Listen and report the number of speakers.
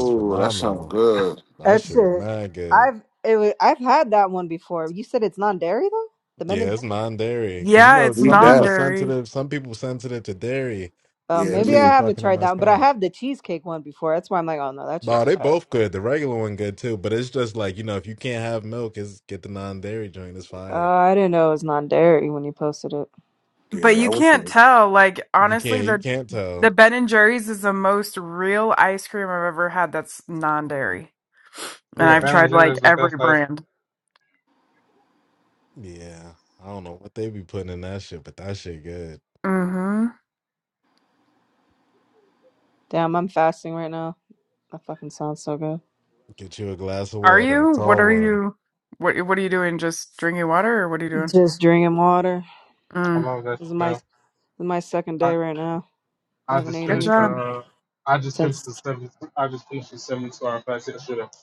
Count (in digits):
5